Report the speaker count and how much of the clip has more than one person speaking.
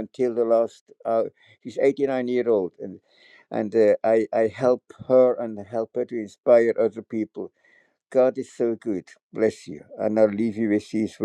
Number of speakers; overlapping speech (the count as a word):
one, no overlap